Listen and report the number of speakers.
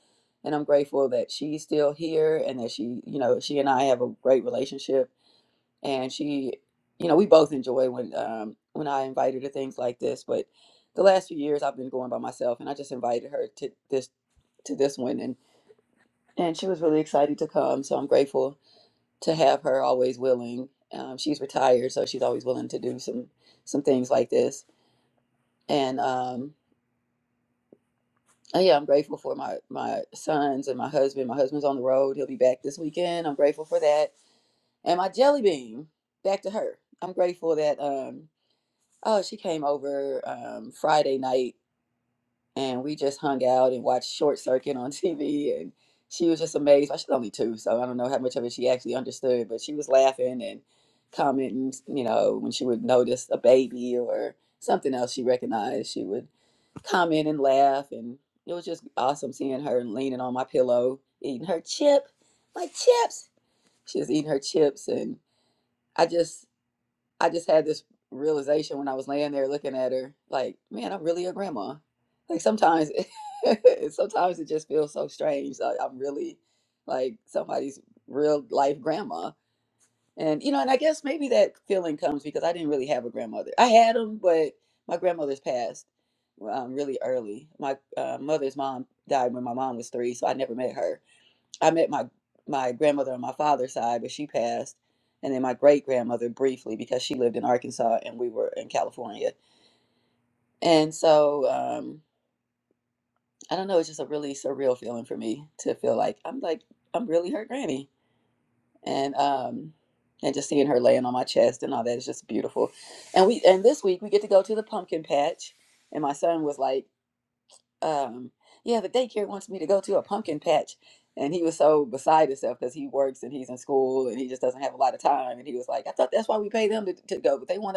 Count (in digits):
1